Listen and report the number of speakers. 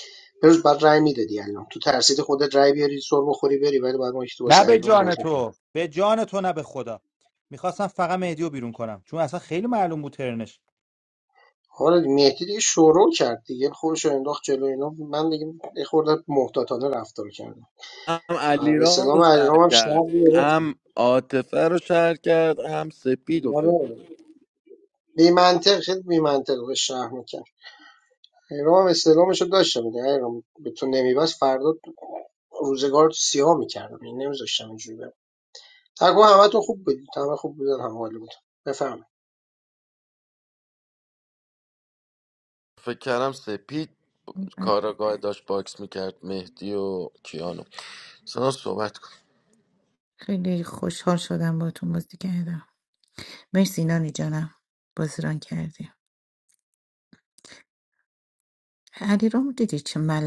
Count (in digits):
4